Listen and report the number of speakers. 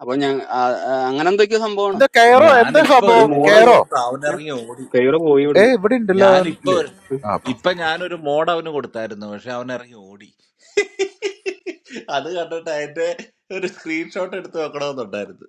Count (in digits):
3